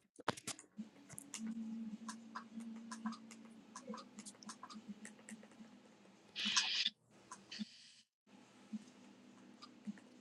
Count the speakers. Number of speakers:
0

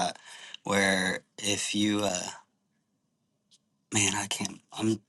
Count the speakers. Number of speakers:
1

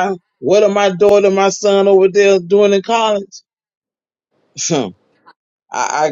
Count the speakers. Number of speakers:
1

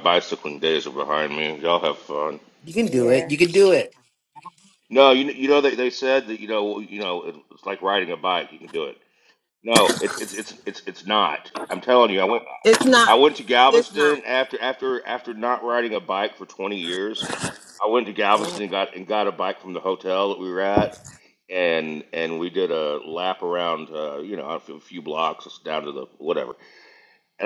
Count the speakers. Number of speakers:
3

